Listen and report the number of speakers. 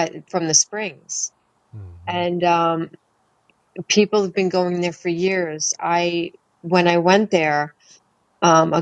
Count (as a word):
one